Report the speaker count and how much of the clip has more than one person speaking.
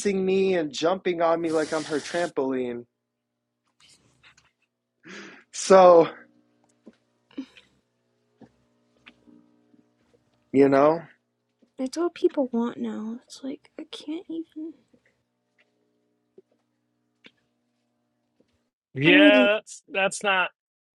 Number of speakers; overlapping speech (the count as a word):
three, about 2%